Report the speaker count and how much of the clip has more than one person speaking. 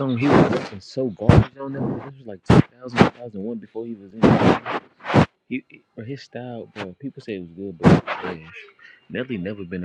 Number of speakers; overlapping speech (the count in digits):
1, no overlap